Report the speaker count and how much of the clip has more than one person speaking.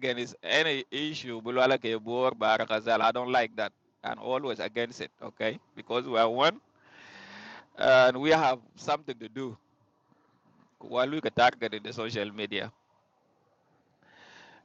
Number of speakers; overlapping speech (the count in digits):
1, no overlap